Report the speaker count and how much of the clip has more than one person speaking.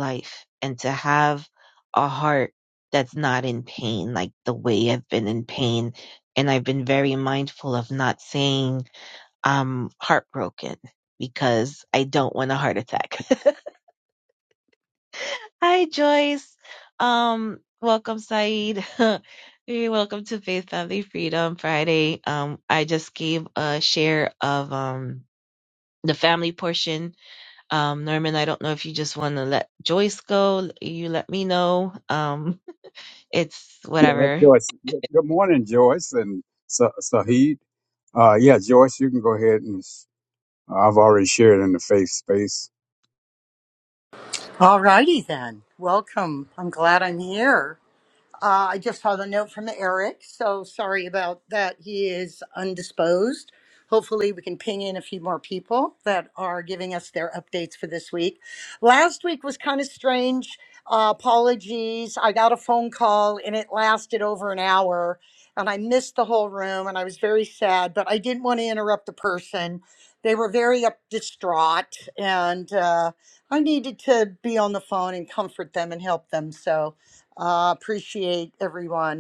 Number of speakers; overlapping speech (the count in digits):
3, about 1%